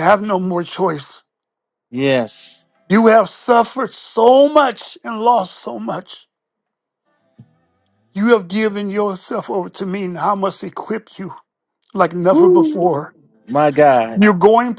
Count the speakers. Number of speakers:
2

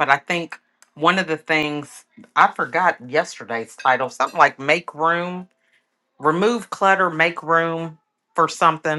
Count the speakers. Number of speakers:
1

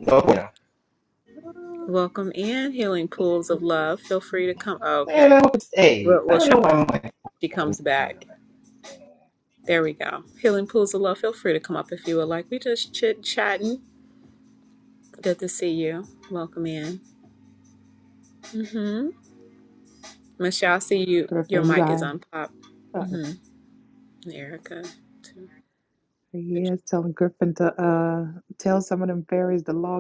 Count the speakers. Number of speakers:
3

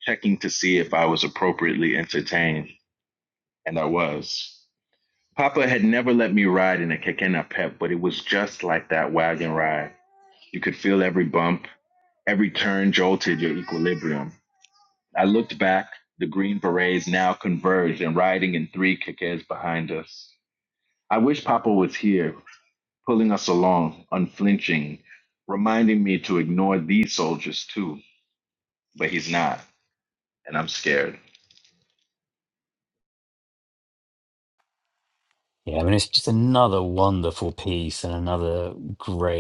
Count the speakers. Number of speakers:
2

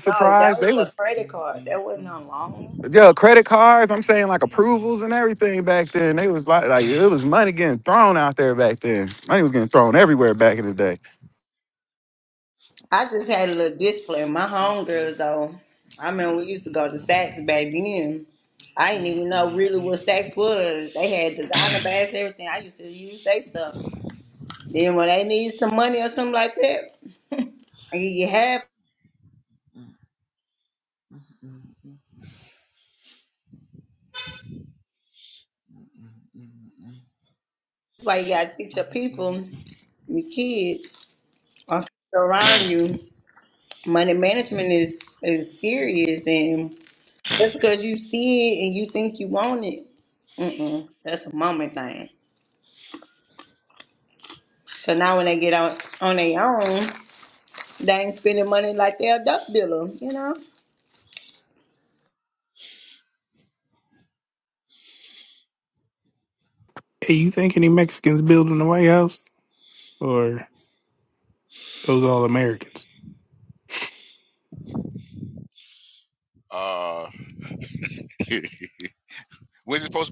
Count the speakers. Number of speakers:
4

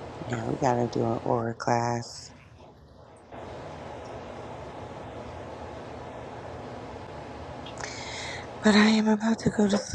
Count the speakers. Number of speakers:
1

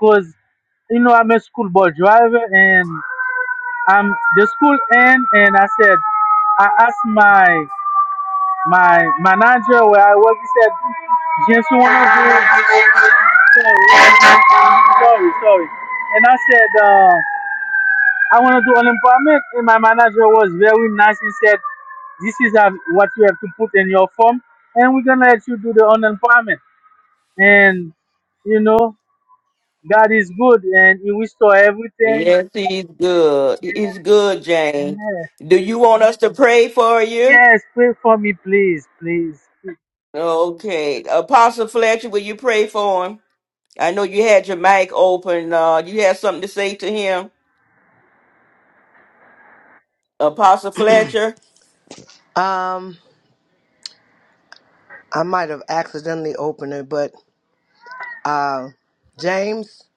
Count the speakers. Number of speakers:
3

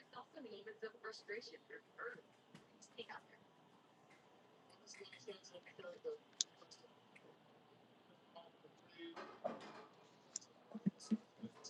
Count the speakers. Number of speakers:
0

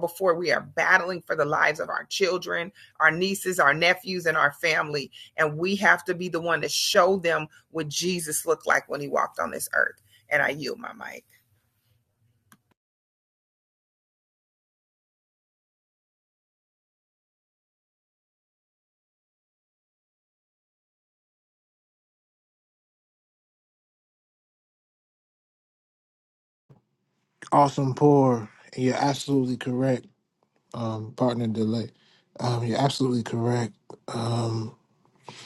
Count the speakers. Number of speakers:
2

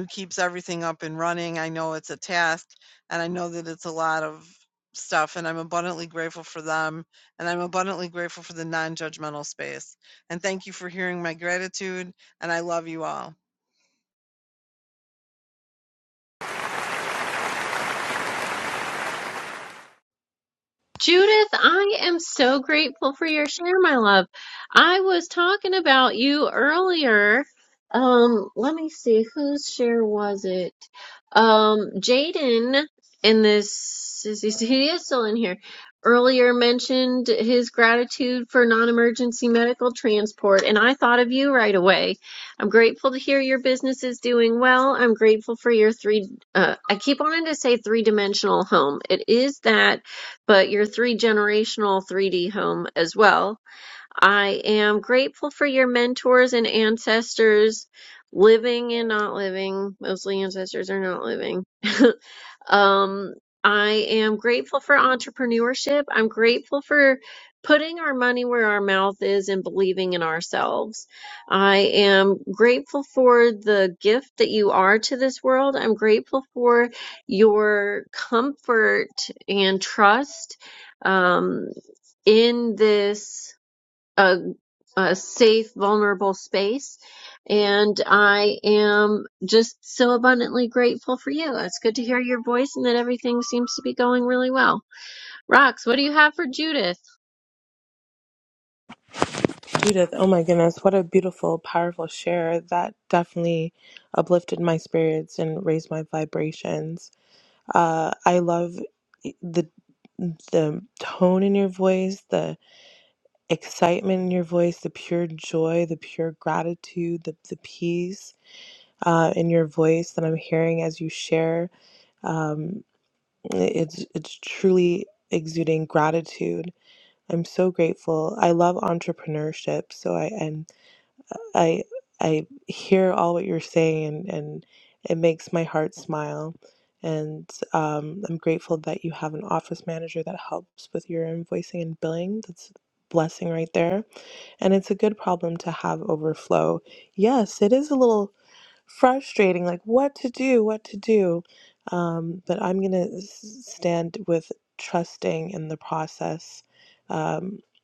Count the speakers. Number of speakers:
3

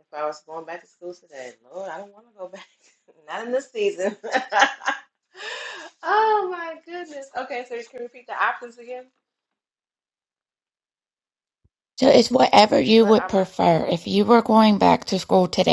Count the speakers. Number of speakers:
2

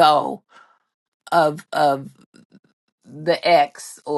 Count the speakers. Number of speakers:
1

